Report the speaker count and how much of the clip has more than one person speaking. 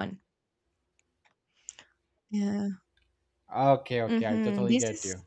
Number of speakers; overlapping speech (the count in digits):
2, about 17%